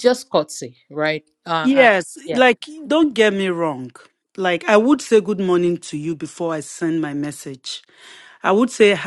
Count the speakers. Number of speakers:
two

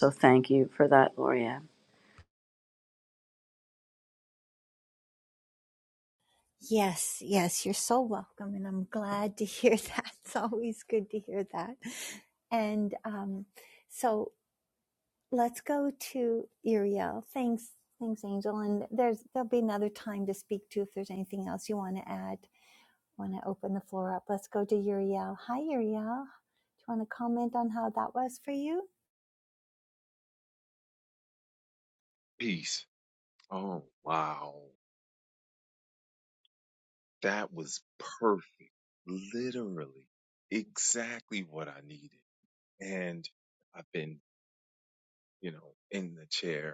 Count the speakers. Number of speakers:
three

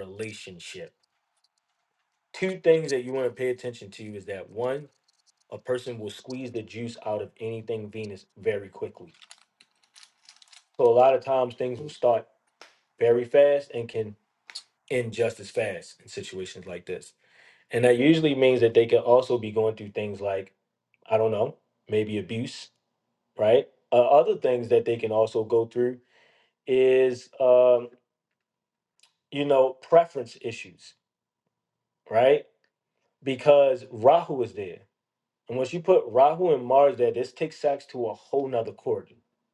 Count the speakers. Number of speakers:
one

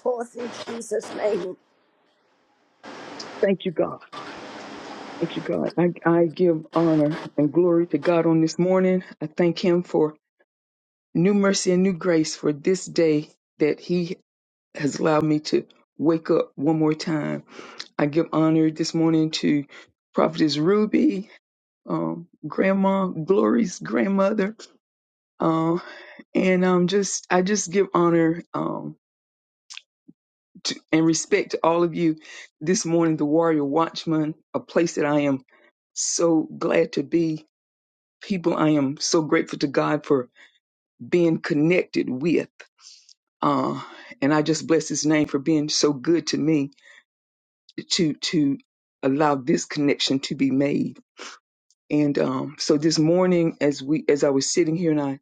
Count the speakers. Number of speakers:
two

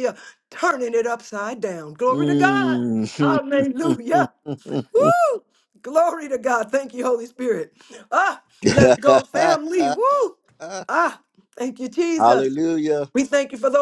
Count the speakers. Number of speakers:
two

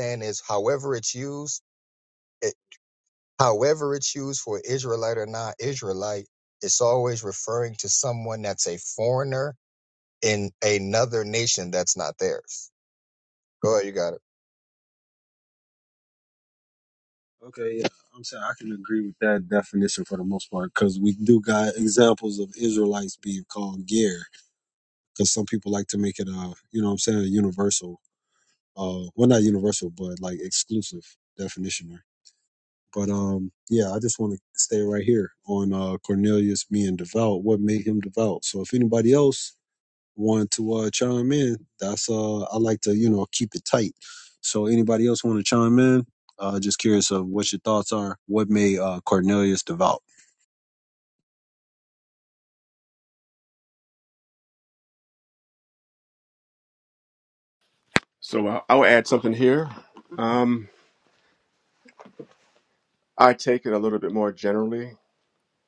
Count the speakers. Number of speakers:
three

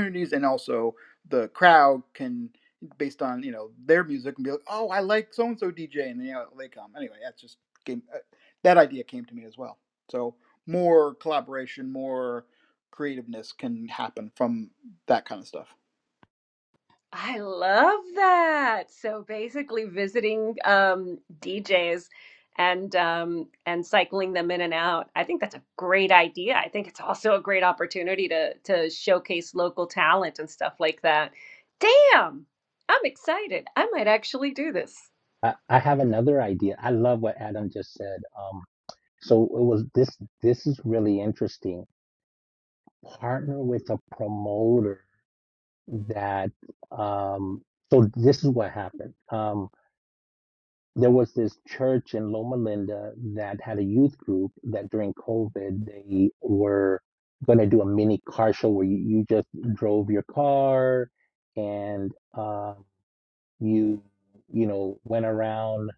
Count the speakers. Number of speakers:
three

